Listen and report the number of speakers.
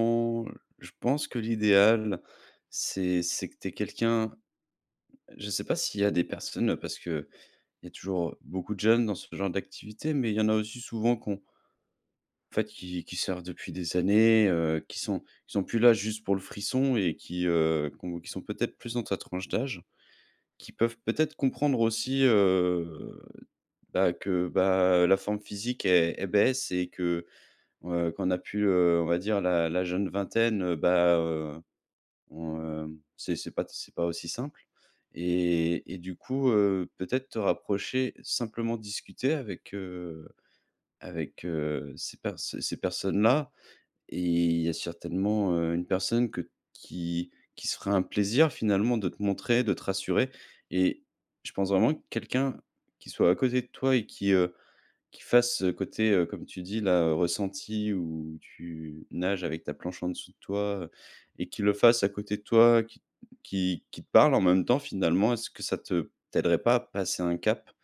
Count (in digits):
1